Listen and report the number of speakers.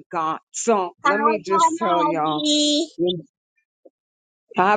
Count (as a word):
two